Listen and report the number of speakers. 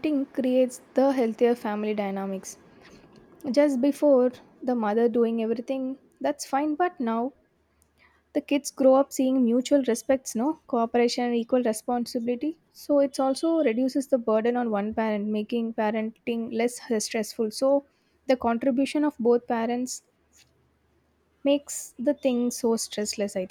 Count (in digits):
1